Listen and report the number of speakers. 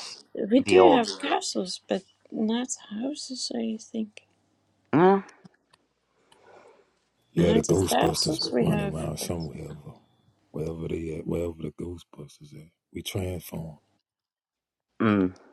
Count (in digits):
3